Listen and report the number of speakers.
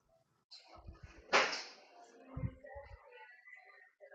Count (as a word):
zero